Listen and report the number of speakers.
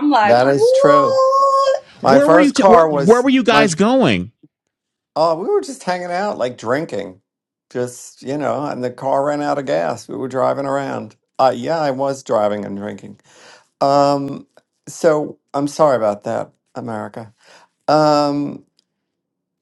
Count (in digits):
3